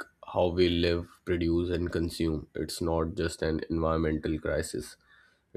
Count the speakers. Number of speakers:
one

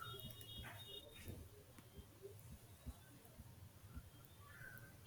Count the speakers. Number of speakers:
zero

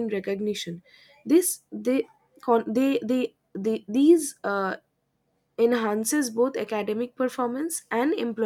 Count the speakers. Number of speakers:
one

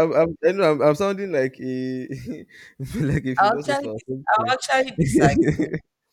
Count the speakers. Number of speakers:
two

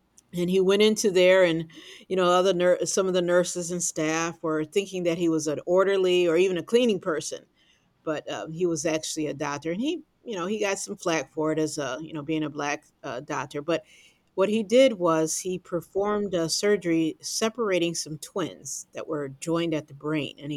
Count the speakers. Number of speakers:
one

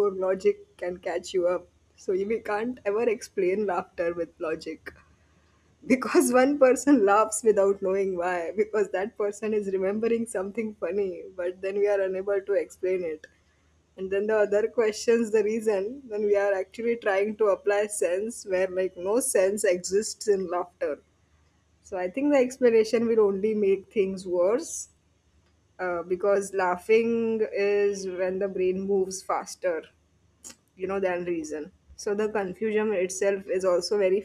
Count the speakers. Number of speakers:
one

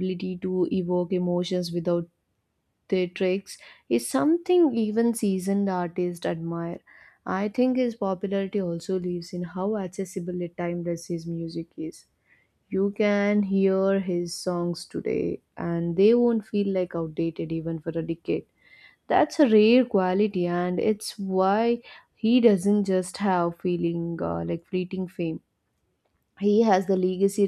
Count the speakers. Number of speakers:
one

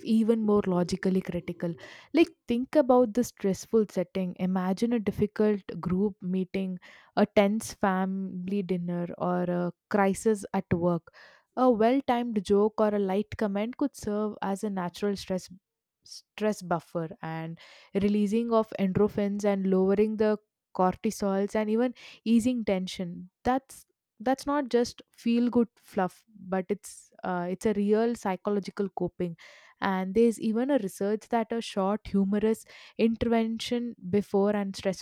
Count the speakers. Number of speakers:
one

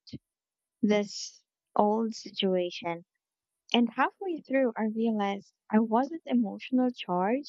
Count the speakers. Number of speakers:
one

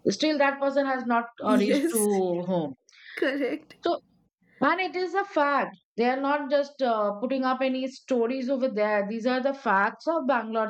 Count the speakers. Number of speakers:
two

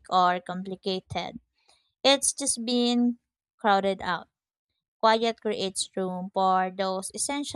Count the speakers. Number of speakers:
one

